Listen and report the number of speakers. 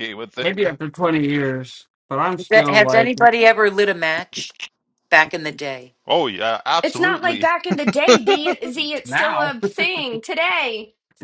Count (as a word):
four